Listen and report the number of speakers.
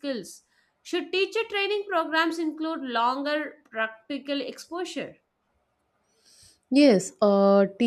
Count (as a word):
two